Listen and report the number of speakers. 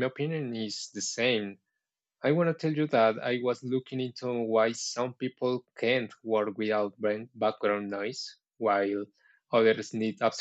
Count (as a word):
one